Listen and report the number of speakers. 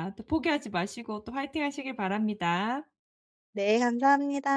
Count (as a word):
two